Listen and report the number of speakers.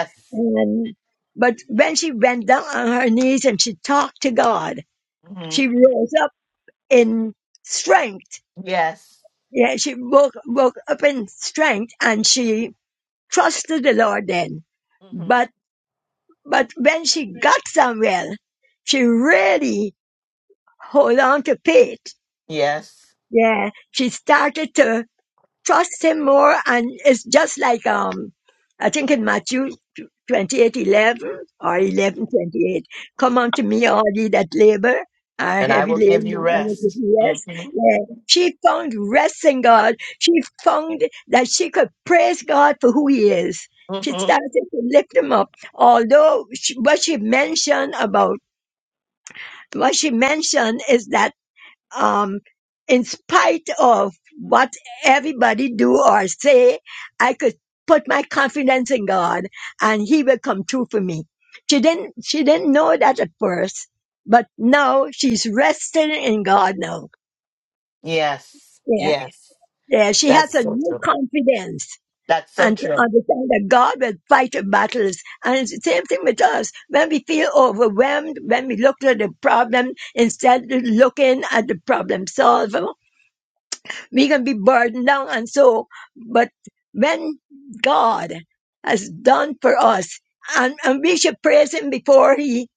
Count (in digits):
2